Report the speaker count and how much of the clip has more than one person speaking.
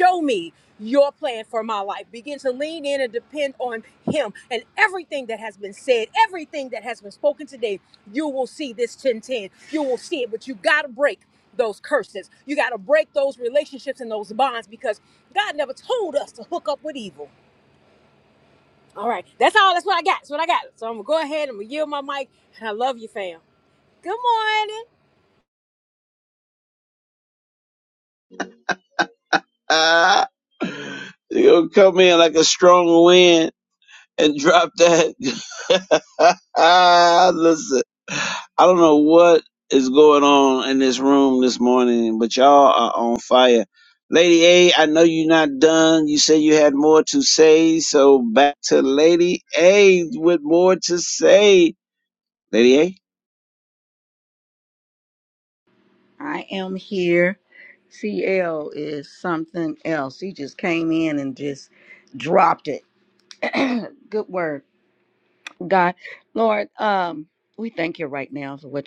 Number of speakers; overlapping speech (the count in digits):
3, no overlap